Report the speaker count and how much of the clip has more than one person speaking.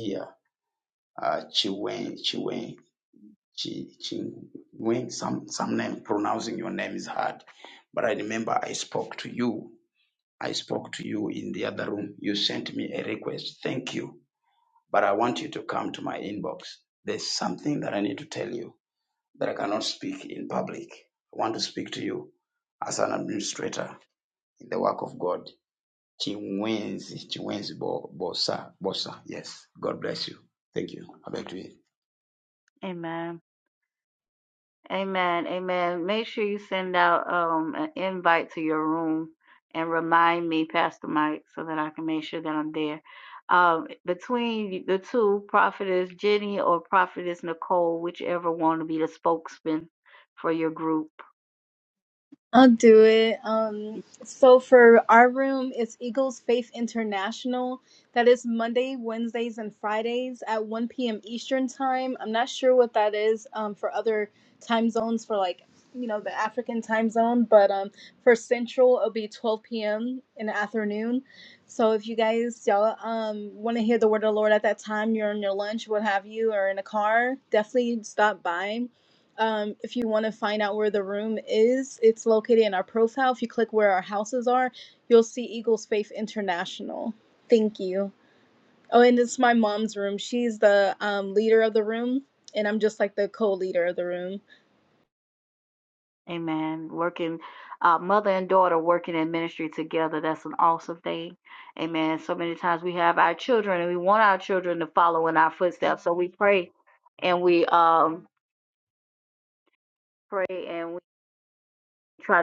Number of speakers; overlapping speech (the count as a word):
three, under 1%